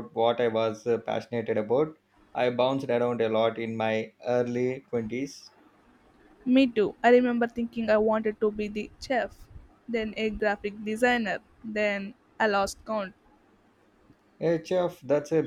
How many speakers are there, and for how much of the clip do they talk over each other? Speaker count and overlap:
2, no overlap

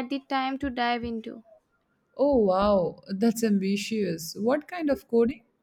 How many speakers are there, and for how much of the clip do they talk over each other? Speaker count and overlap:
2, no overlap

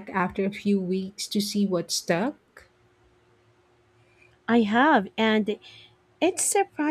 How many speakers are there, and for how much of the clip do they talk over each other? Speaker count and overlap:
2, no overlap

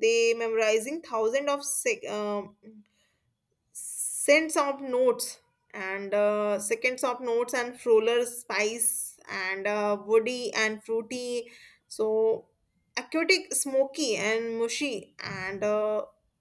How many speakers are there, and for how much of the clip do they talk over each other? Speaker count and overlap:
1, no overlap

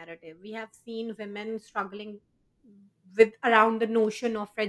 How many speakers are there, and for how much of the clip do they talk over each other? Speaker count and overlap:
1, no overlap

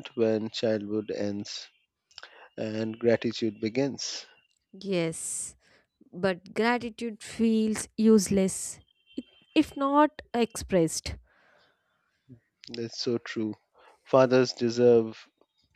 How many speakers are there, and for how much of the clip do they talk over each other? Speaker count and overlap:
2, no overlap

